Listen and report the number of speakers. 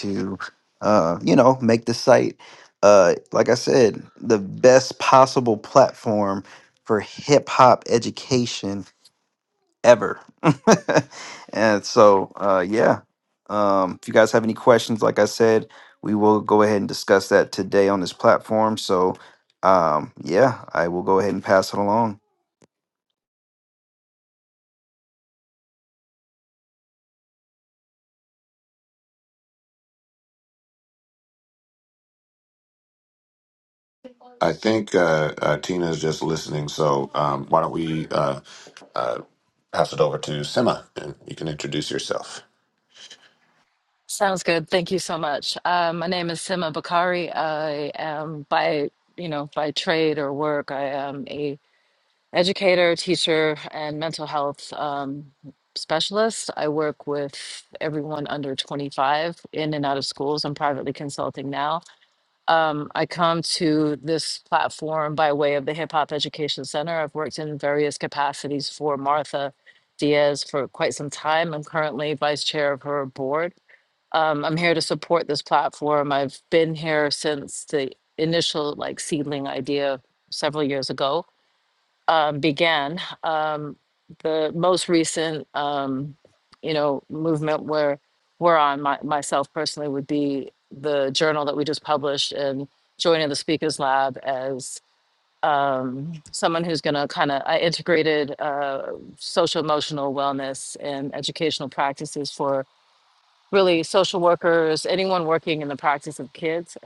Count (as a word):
three